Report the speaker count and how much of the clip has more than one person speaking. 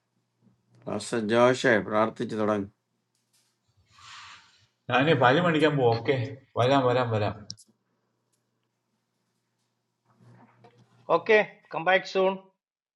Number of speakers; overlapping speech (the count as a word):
three, no overlap